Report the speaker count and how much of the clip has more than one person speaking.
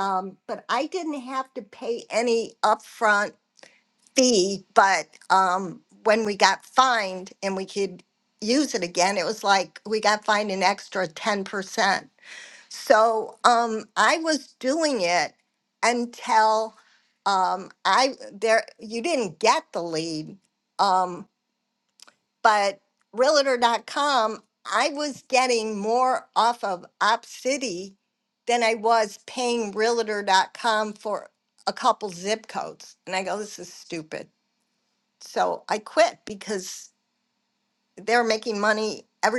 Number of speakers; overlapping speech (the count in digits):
1, no overlap